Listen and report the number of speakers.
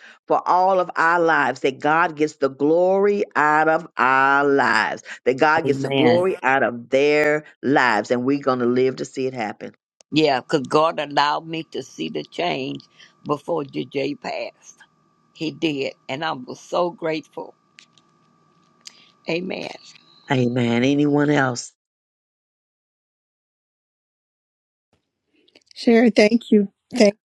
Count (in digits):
3